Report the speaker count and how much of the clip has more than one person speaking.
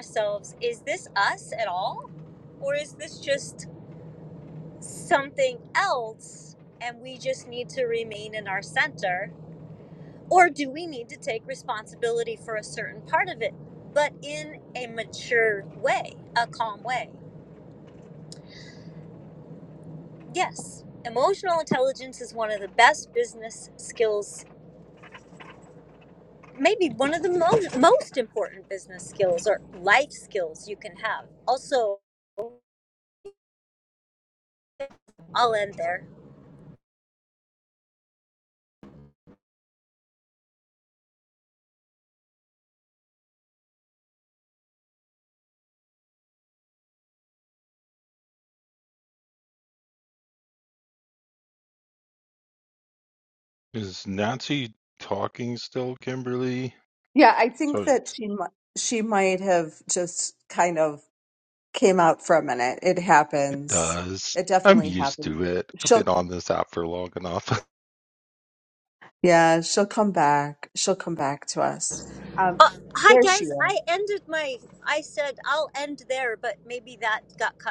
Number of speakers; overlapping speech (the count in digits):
3, about 3%